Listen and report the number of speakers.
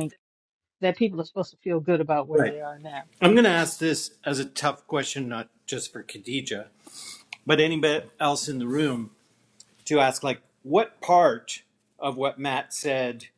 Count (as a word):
two